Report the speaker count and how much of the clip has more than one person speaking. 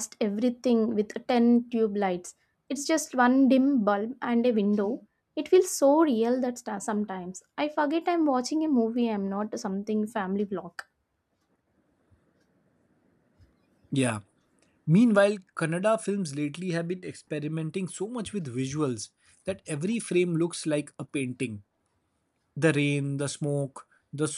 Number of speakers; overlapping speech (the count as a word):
two, no overlap